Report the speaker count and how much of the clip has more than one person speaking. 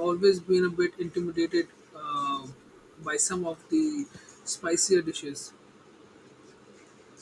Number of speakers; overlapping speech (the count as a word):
one, no overlap